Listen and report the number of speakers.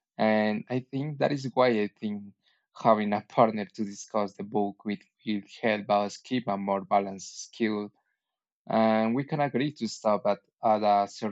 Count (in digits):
1